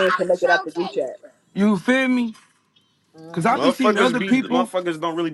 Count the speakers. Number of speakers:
3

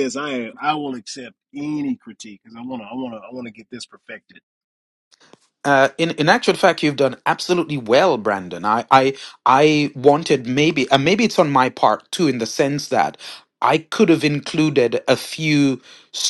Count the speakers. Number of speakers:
2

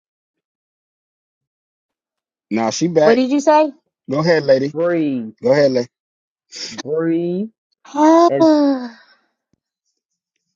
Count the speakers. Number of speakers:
3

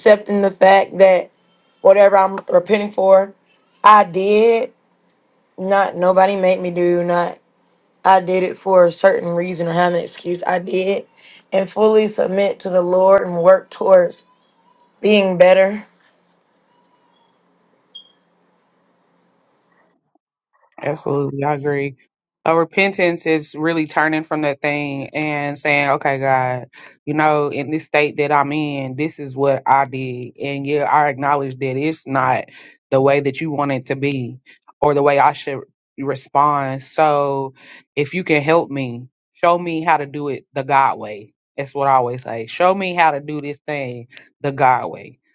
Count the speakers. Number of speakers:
2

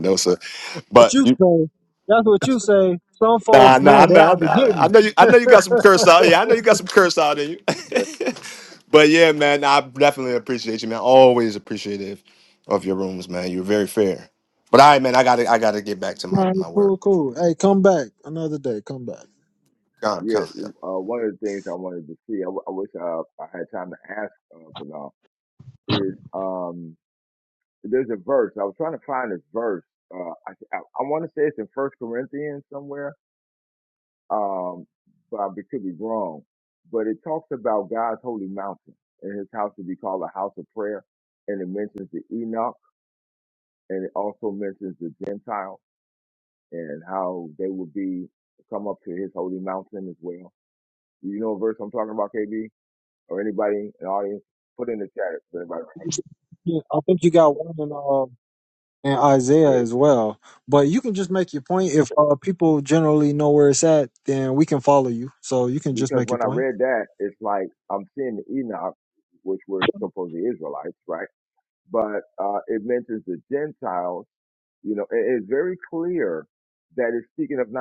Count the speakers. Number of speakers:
3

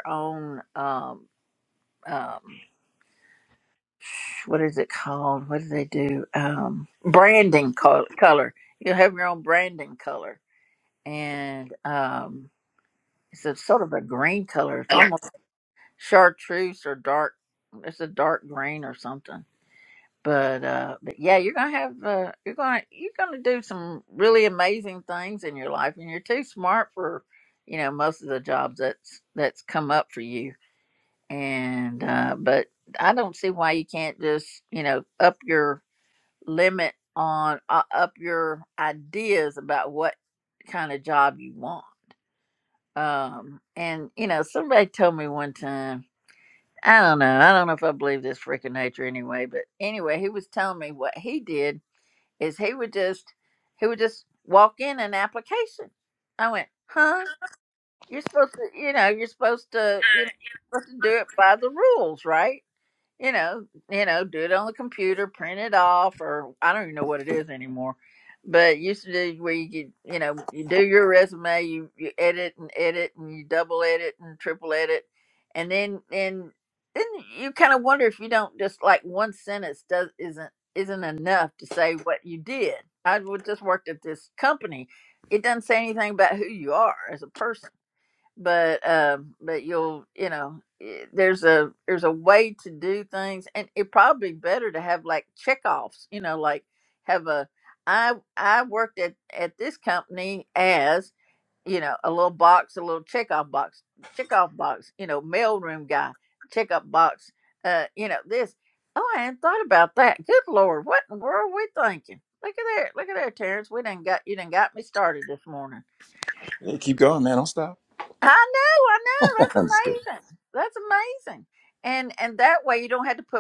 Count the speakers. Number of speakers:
2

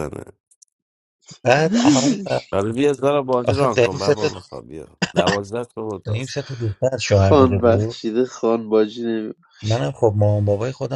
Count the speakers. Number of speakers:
3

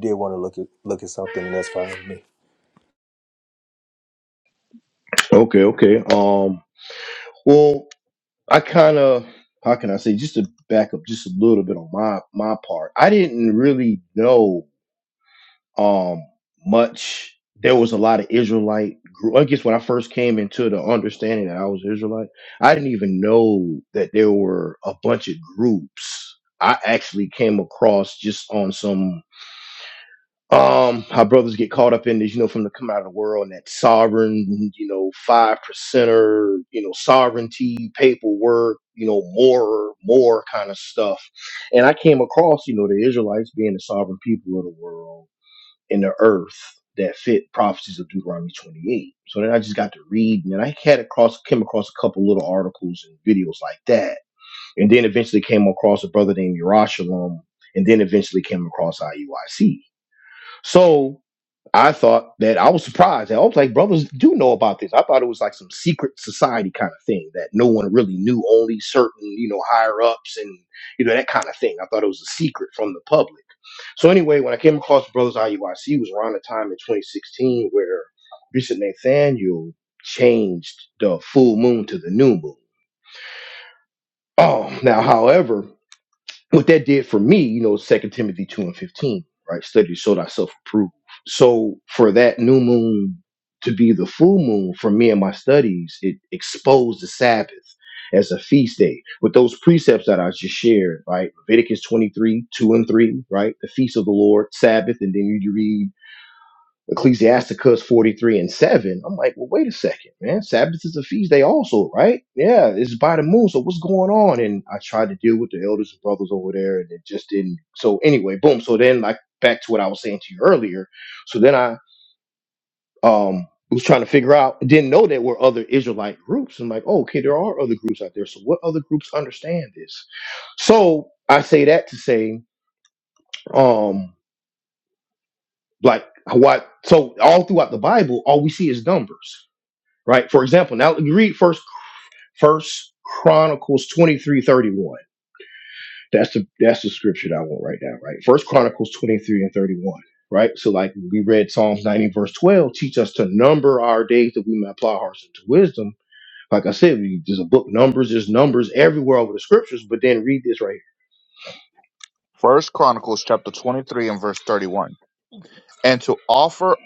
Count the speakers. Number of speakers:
3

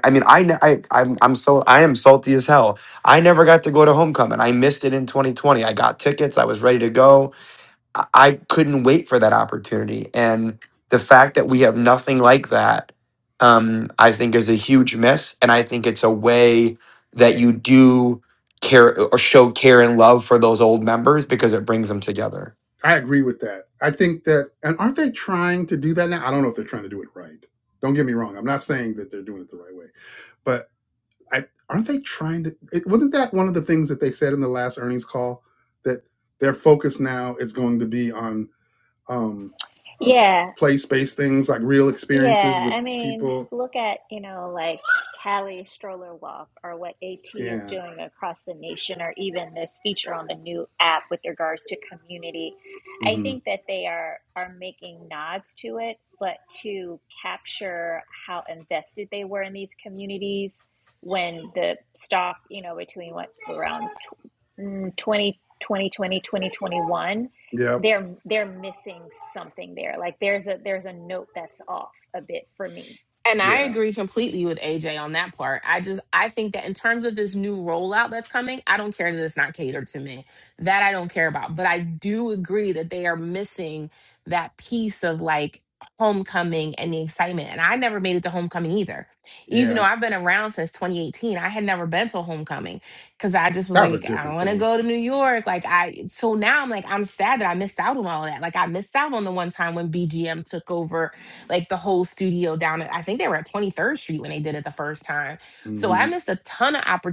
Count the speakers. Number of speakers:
4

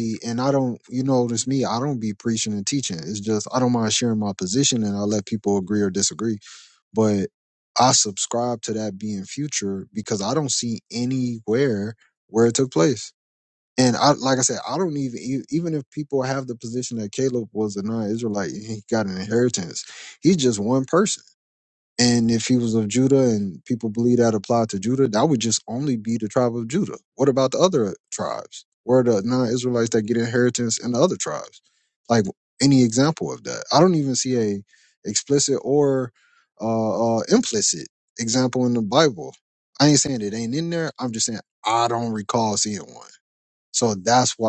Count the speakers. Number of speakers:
1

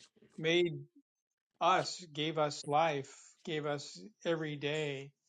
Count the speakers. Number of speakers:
1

